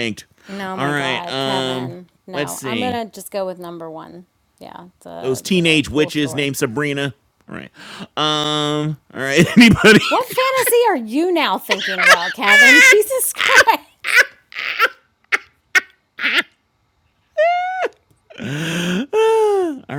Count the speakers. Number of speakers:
two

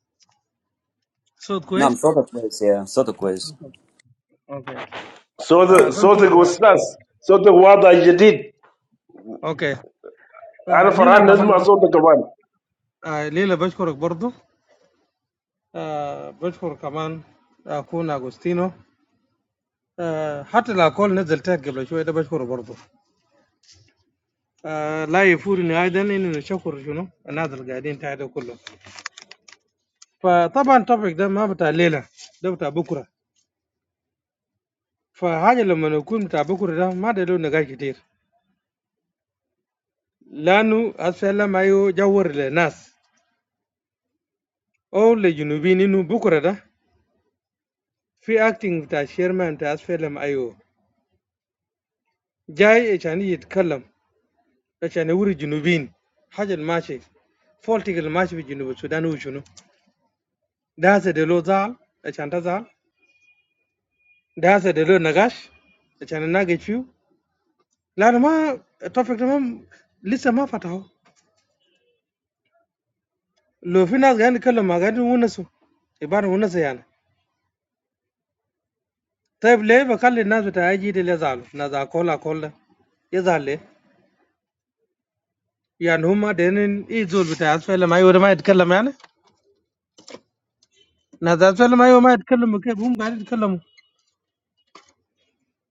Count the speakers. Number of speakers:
three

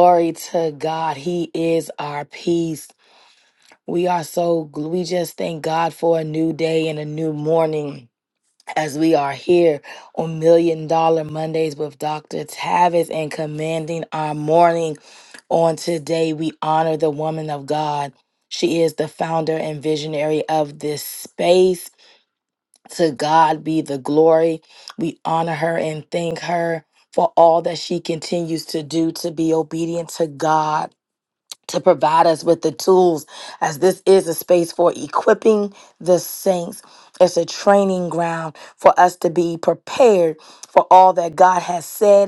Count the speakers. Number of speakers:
one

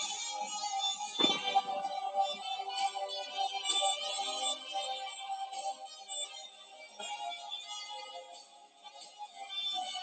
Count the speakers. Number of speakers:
zero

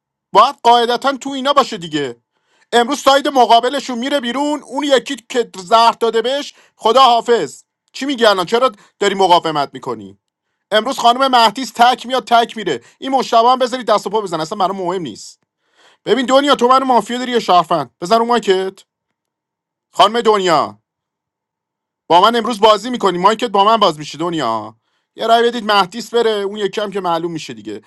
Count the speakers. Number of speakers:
one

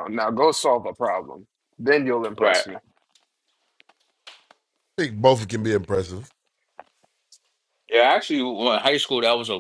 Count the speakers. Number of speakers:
three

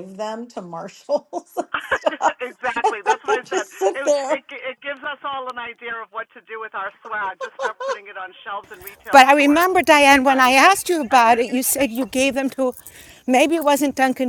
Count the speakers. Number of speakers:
three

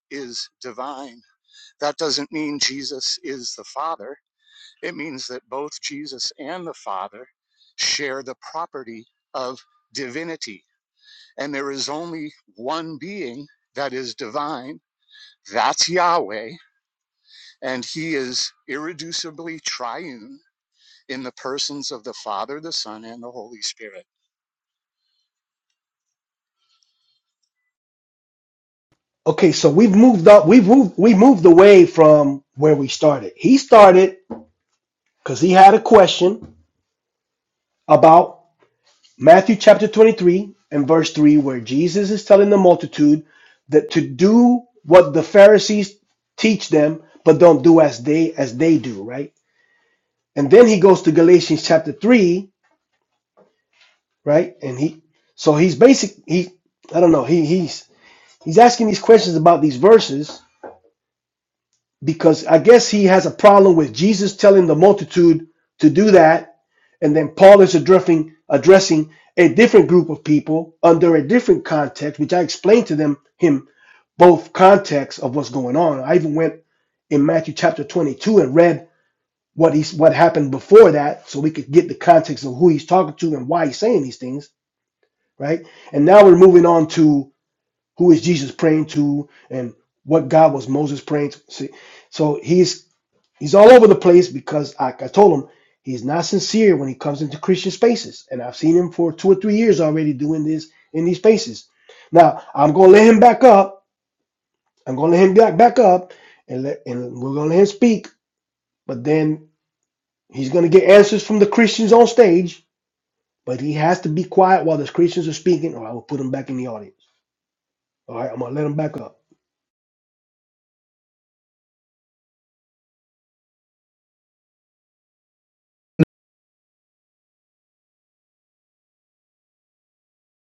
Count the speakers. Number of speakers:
two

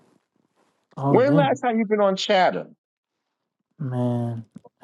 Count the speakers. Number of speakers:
two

